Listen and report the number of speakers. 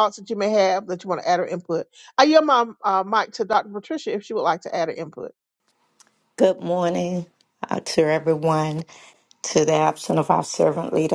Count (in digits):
2